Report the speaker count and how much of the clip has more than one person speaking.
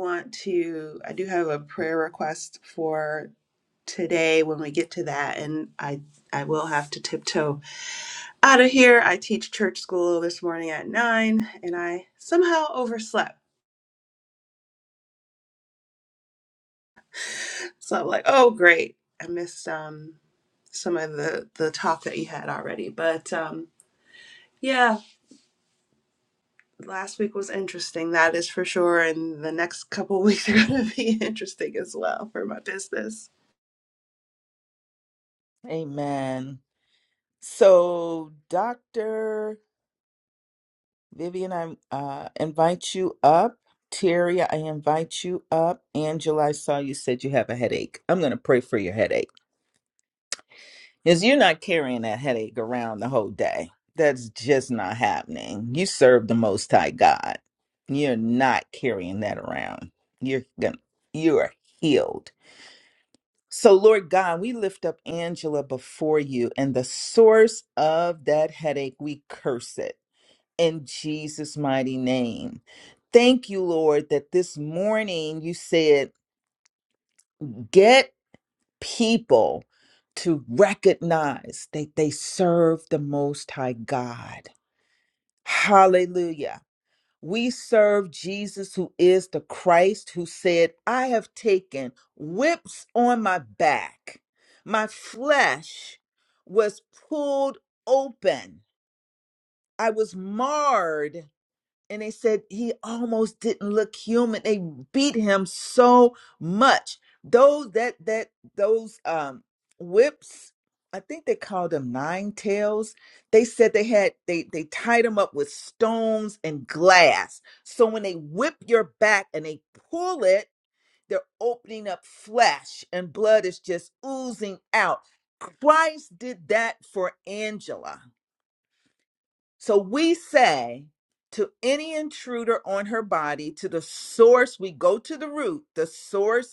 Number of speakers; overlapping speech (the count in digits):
2, no overlap